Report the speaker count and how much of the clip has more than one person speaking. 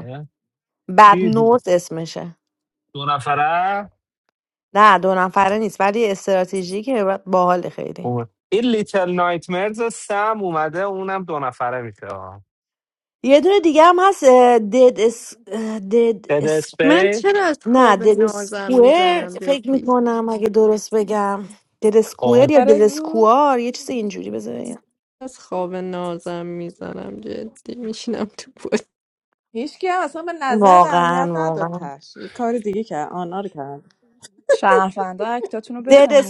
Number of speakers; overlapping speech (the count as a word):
five, about 15%